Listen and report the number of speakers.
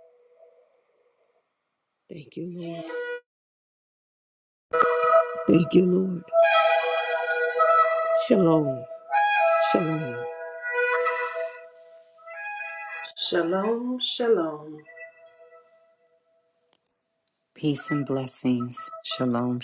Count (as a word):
three